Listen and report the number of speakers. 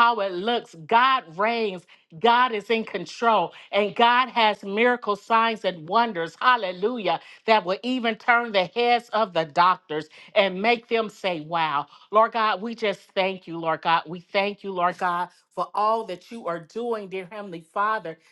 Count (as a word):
one